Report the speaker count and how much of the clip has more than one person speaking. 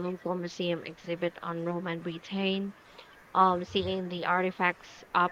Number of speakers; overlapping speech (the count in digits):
1, no overlap